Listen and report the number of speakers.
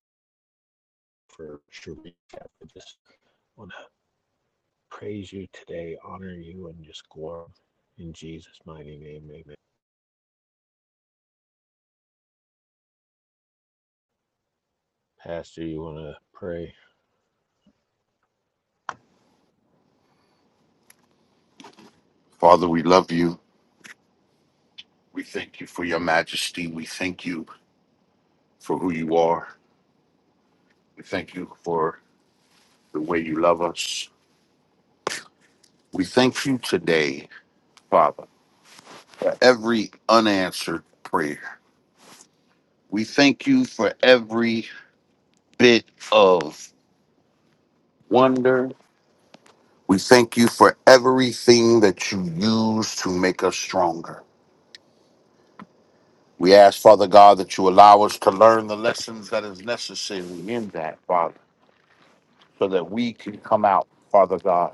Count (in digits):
2